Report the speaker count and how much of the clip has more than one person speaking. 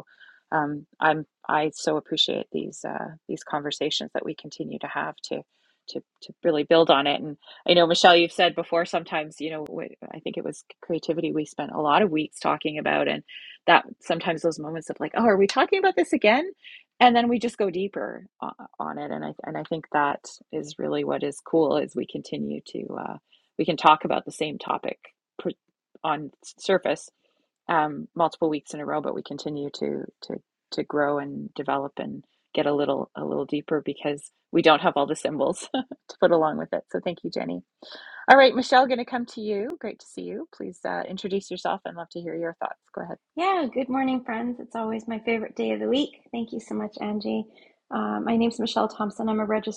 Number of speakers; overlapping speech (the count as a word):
two, no overlap